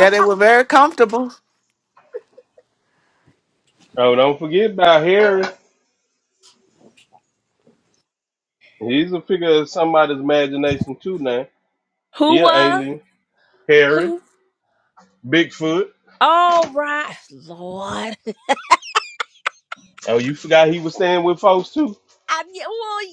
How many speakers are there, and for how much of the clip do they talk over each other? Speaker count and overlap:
3, about 2%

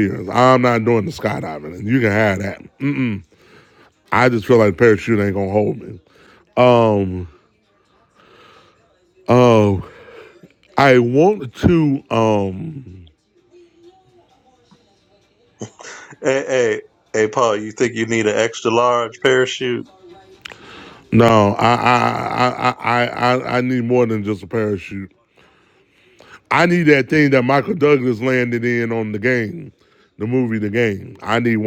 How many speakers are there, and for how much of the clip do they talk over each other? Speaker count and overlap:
2, no overlap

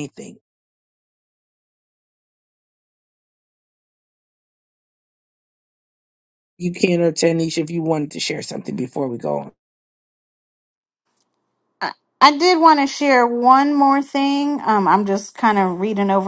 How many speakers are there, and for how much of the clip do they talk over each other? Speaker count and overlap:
2, no overlap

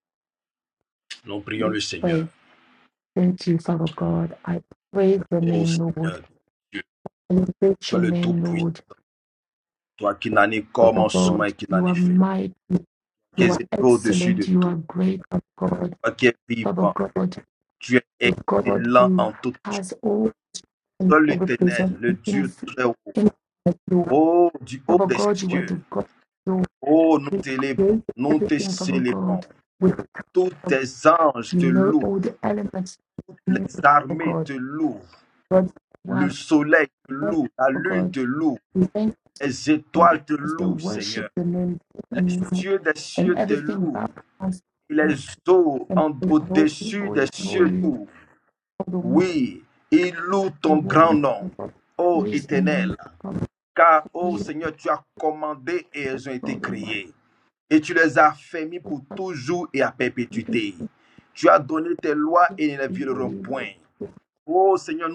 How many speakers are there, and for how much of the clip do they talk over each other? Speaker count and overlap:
2, about 32%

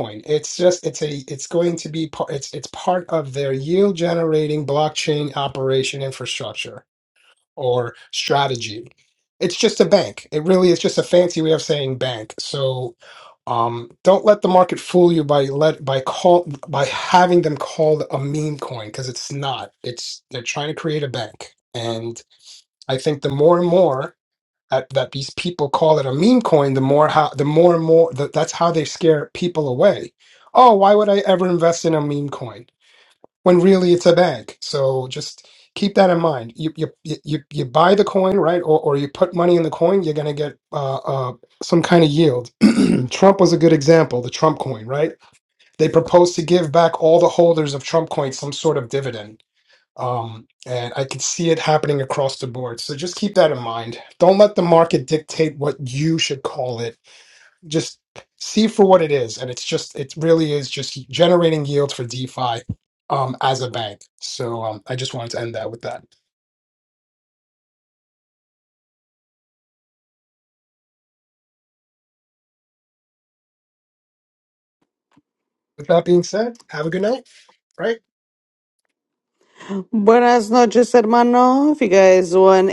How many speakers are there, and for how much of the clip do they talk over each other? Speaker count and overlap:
2, no overlap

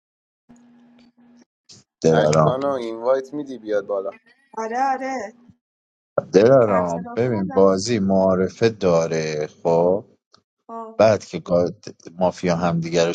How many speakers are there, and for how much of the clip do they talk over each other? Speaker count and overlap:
3, about 12%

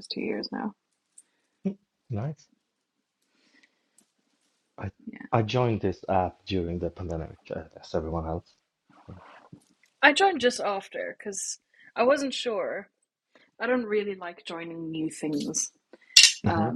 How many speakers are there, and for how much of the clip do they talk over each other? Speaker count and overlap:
2, about 2%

